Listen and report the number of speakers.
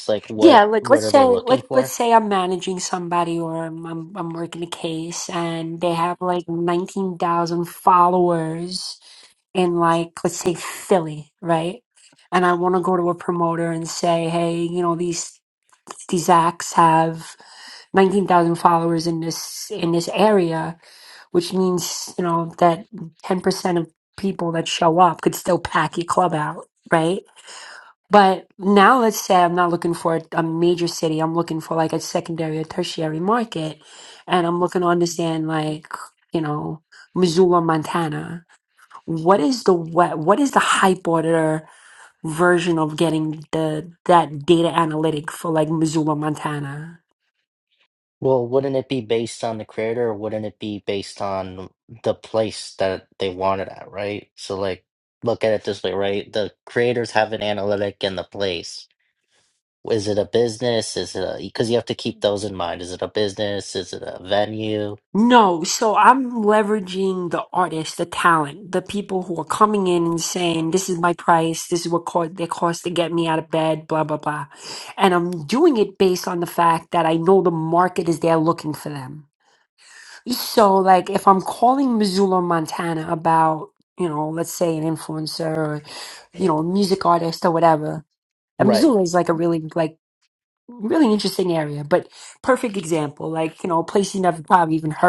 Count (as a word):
two